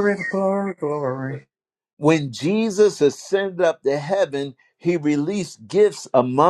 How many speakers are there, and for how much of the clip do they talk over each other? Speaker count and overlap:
two, no overlap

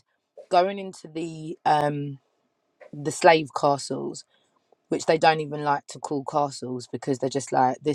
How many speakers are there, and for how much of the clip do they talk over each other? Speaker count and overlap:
one, no overlap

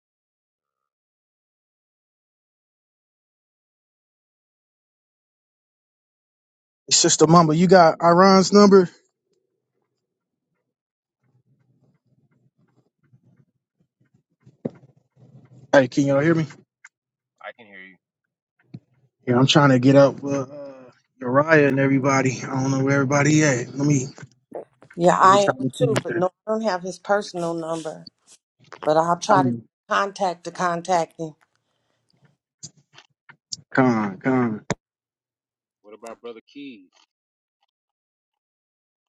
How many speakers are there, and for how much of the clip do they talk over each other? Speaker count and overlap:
three, about 3%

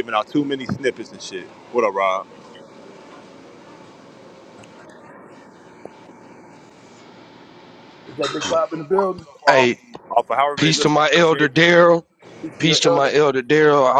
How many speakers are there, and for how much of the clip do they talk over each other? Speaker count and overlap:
three, about 19%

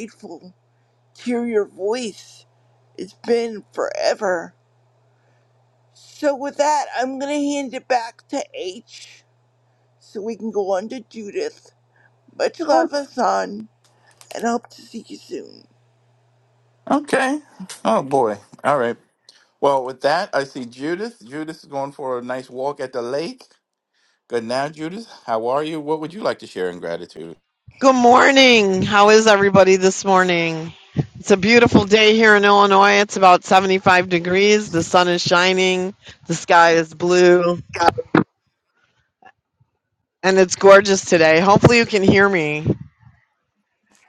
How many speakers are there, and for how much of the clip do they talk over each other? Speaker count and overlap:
three, no overlap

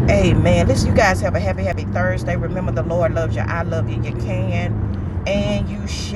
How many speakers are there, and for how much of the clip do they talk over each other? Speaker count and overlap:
one, no overlap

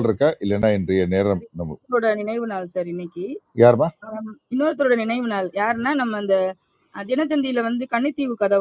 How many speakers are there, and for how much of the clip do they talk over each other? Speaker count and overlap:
two, about 2%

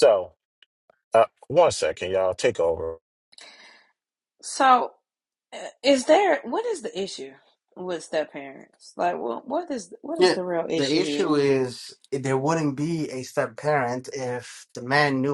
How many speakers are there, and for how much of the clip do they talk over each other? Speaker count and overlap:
three, about 5%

